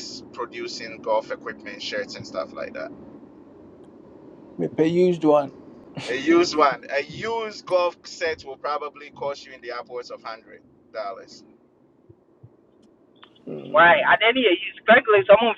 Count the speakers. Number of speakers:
3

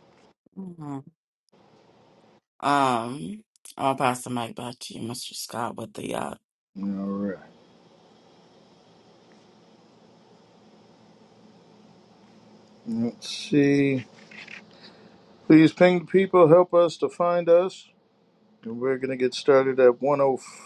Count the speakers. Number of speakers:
2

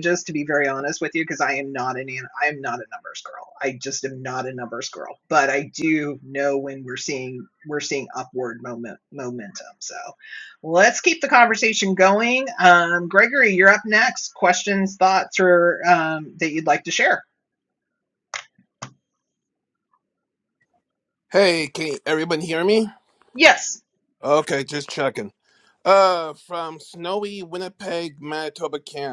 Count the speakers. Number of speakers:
2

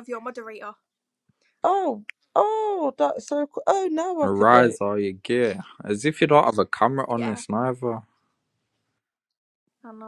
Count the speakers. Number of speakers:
3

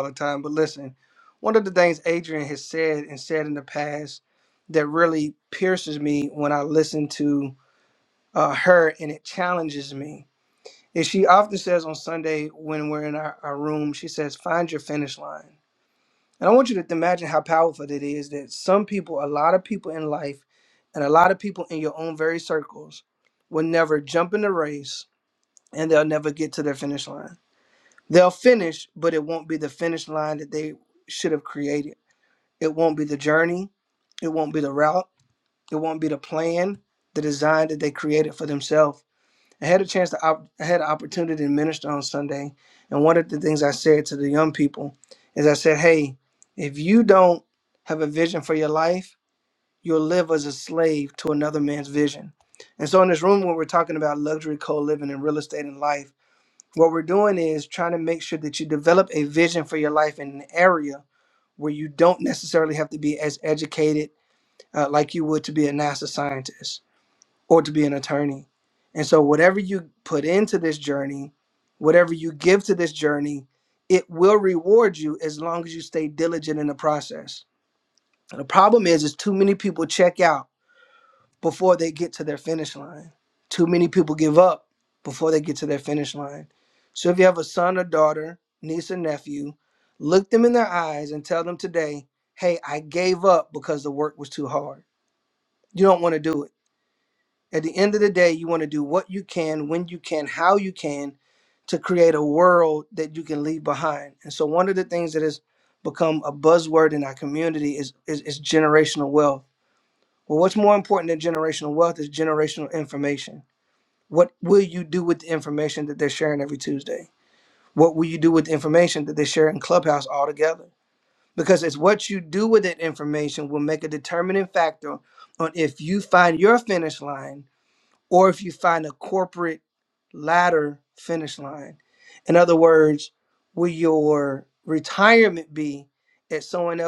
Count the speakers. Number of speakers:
1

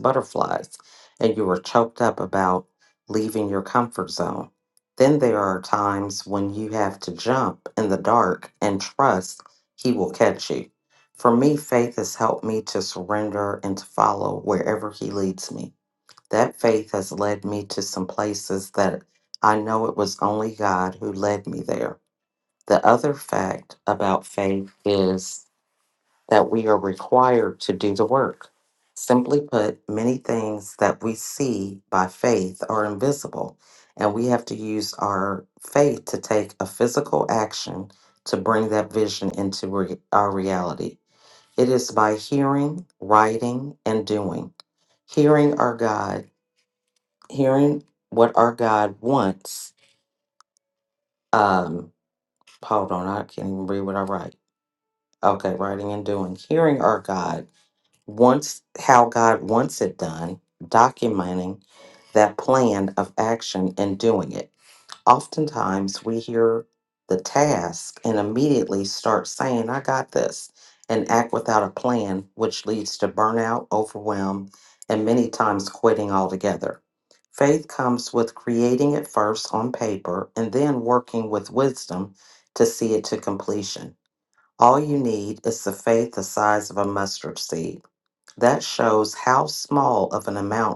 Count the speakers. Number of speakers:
1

